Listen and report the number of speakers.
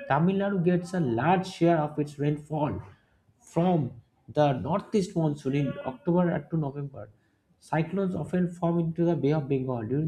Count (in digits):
1